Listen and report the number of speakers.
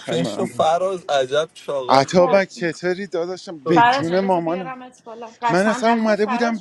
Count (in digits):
3